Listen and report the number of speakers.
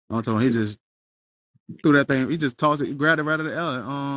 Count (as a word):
one